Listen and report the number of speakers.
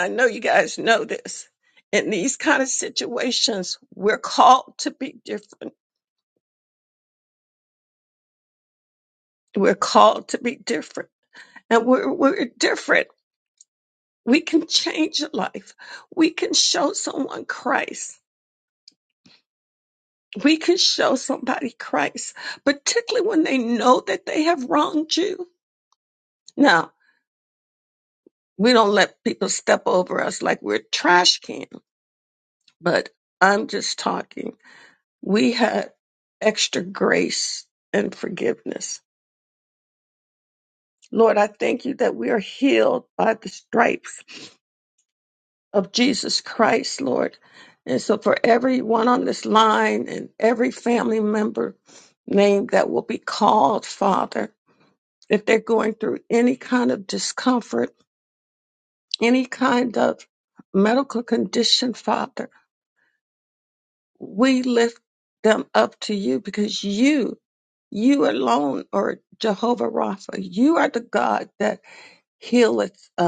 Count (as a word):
one